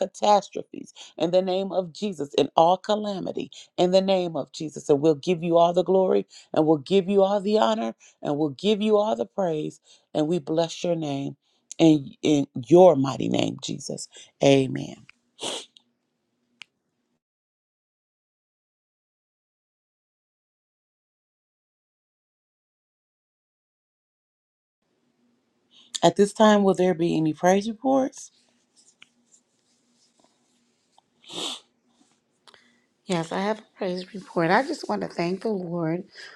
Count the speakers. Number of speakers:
2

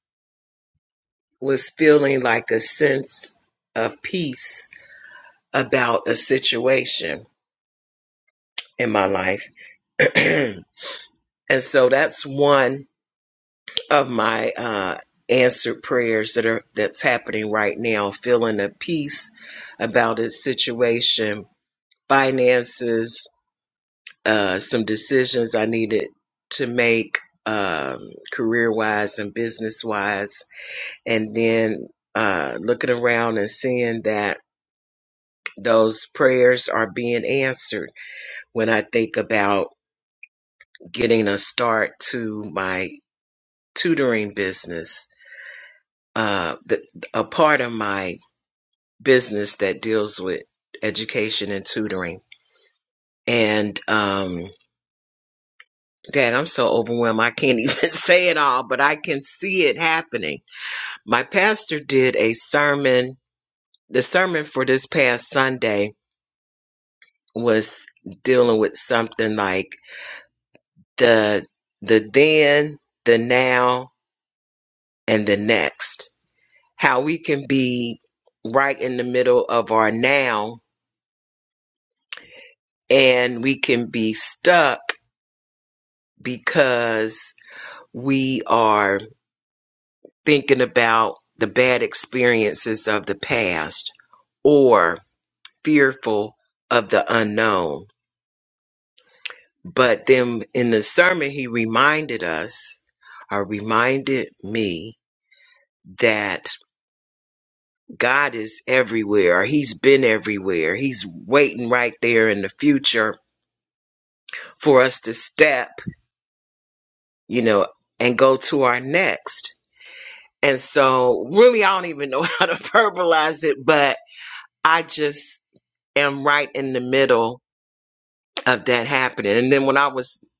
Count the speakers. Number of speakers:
1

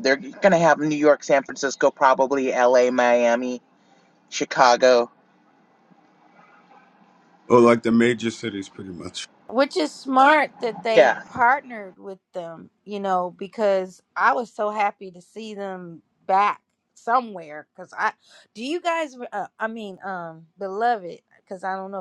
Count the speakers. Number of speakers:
3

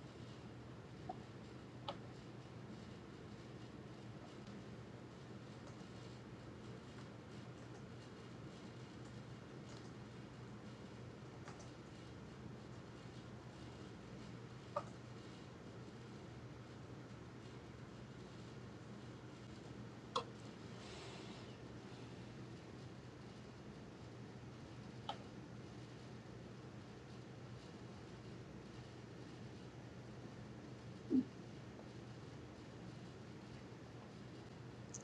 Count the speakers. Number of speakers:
0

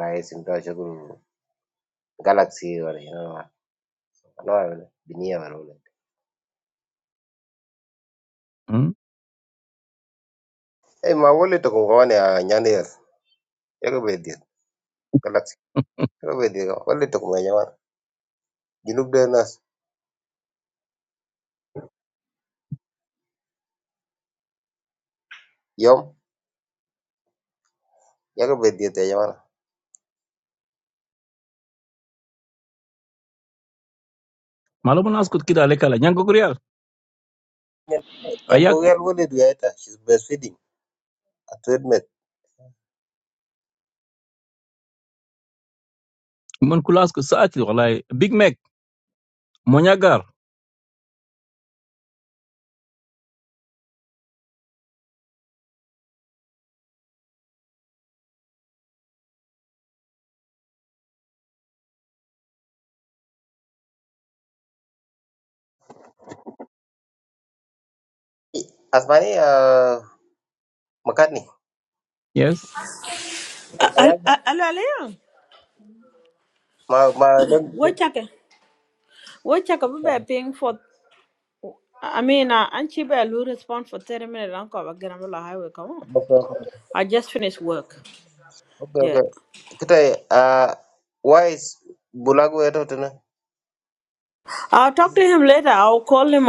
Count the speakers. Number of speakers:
3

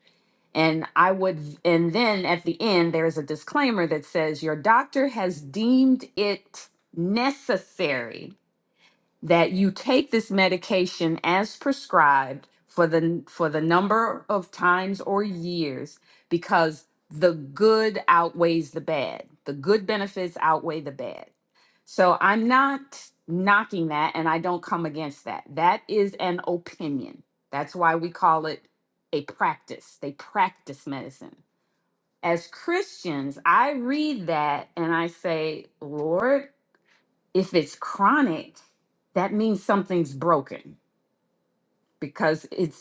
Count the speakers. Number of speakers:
1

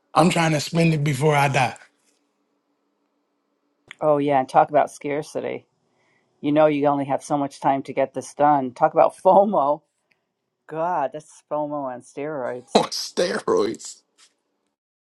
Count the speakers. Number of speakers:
2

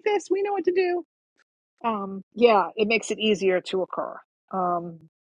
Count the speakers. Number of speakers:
1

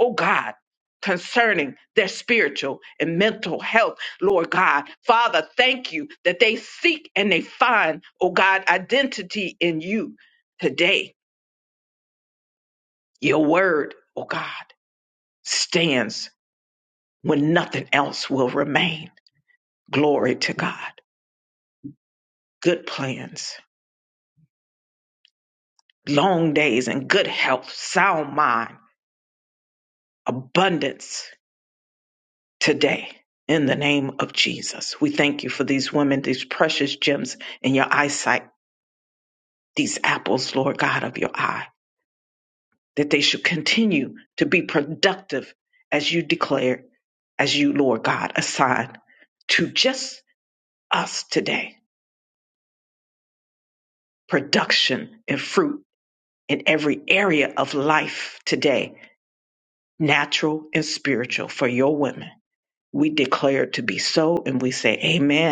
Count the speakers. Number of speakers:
1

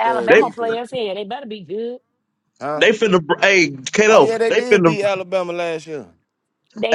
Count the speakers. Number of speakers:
3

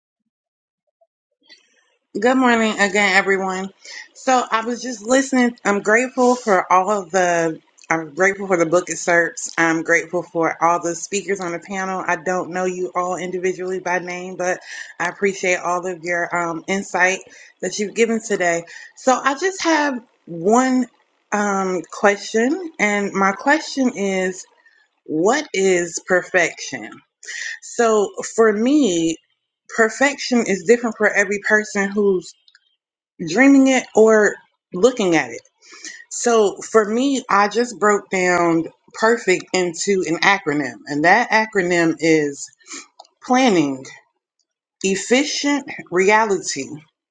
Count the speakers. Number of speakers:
1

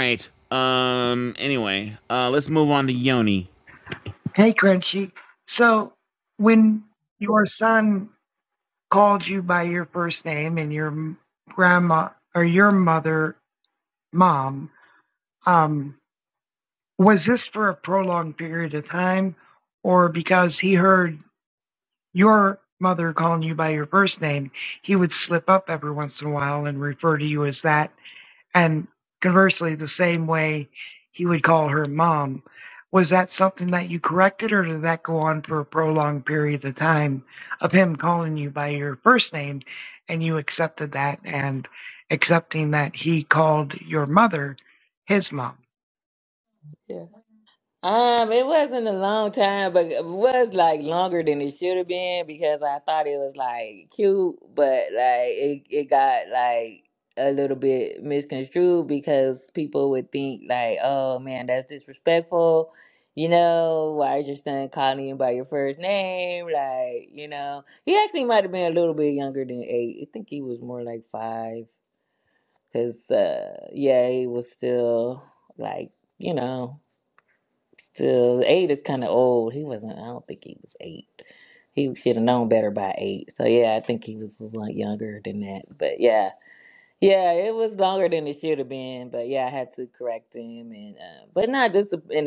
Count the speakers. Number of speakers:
3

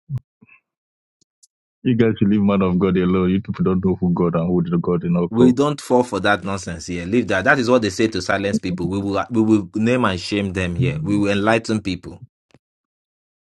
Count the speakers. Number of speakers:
2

